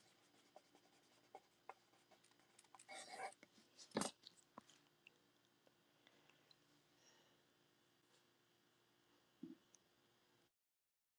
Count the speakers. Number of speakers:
0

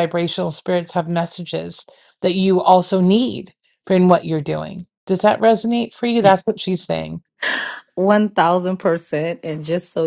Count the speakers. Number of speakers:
2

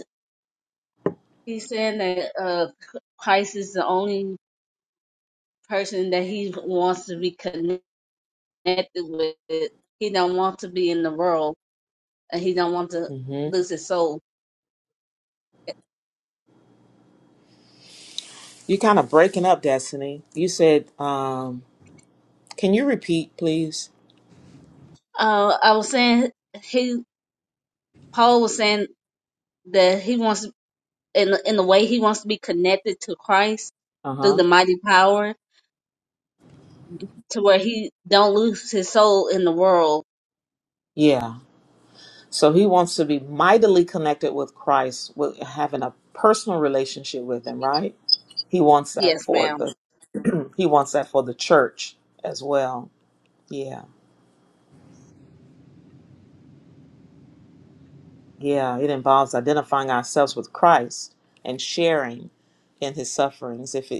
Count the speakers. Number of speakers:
2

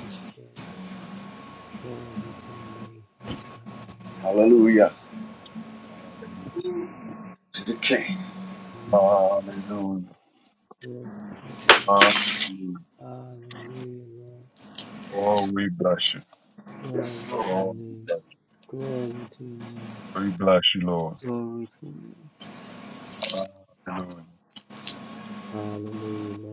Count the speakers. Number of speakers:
3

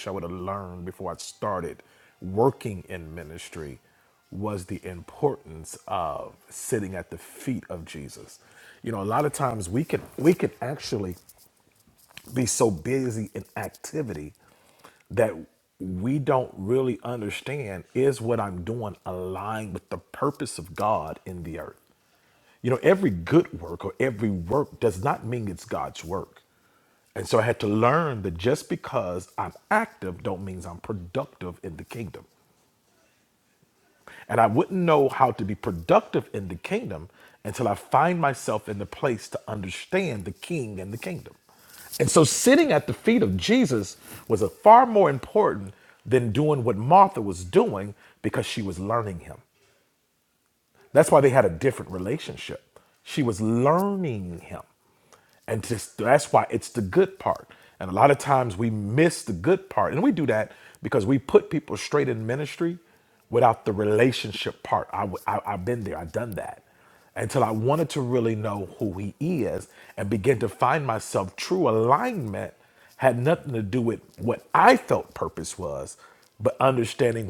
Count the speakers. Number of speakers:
1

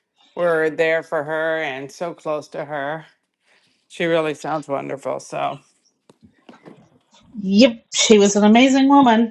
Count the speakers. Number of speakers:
2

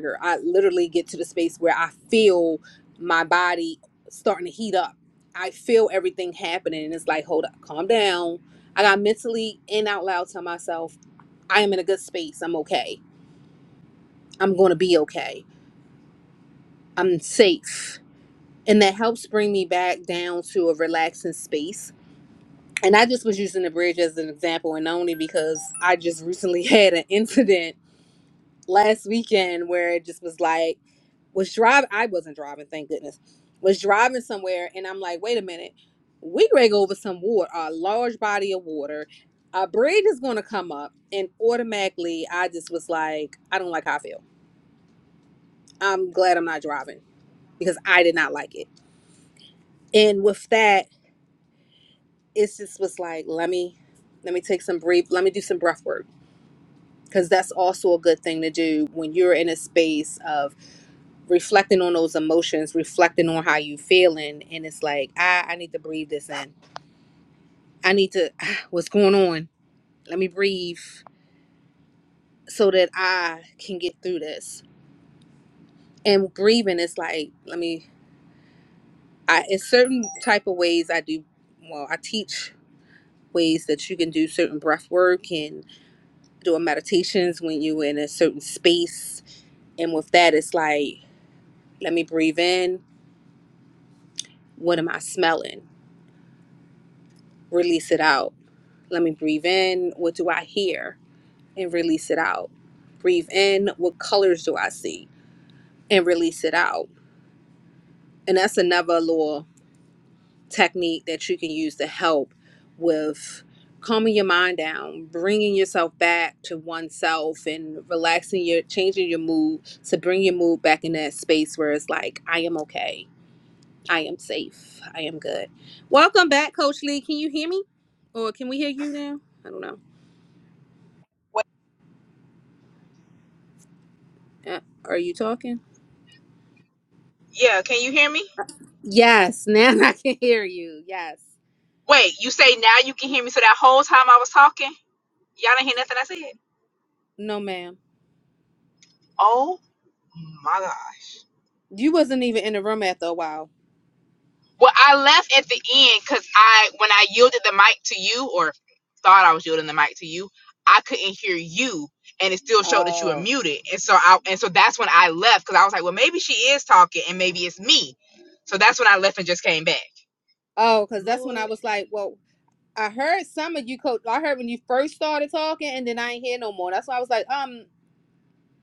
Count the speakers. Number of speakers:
2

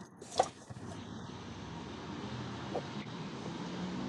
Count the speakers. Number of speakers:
0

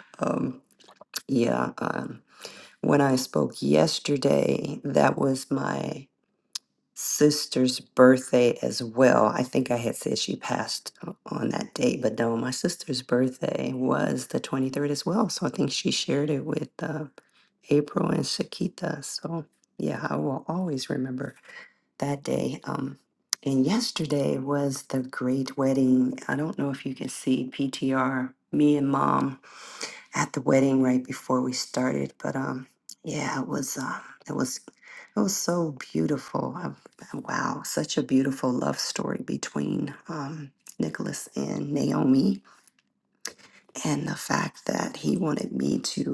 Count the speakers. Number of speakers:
1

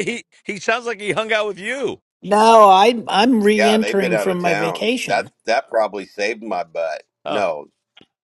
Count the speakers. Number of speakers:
3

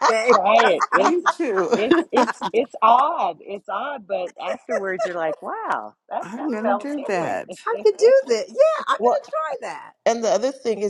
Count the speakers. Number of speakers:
4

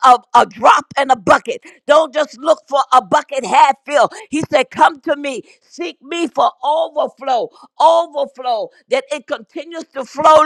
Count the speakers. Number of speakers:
1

